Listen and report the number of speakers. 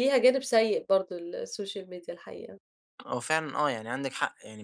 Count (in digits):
2